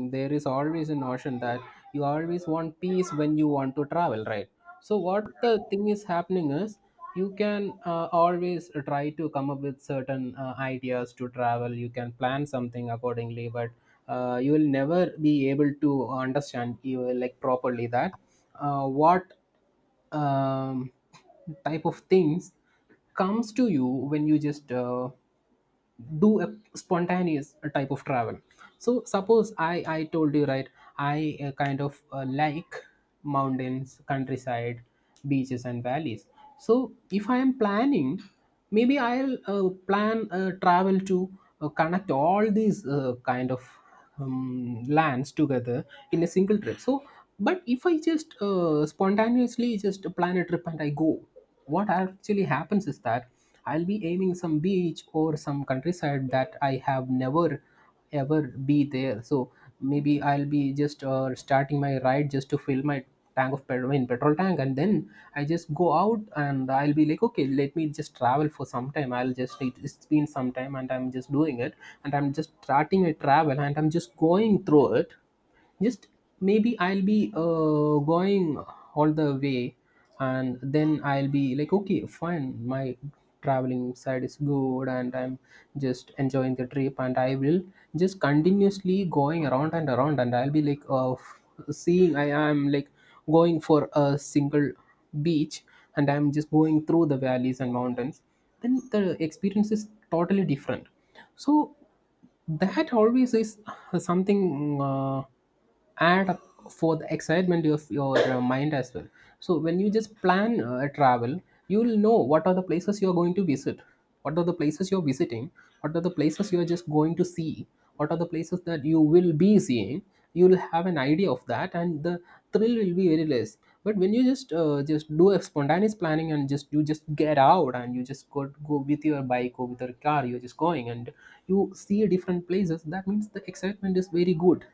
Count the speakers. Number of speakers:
one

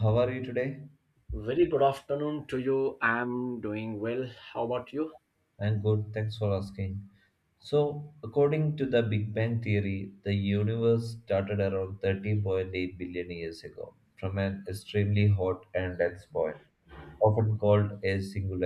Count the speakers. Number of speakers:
two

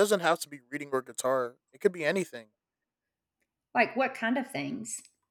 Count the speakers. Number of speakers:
two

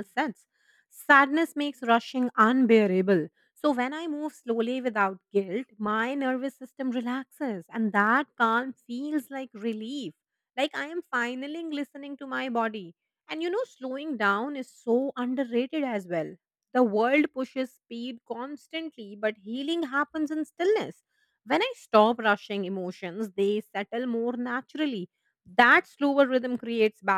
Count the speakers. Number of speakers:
one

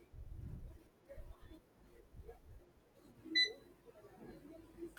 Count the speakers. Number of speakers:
zero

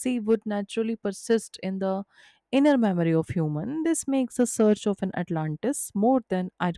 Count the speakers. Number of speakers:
one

